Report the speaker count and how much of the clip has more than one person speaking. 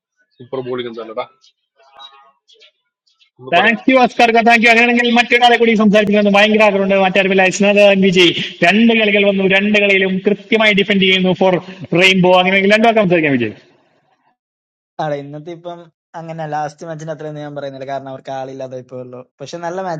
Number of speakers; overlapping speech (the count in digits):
3, about 3%